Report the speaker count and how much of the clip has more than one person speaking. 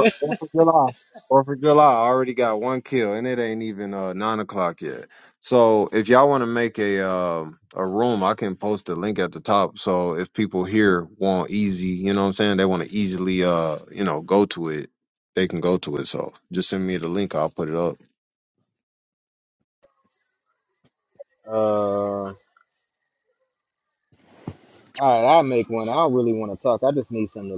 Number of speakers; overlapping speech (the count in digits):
2, no overlap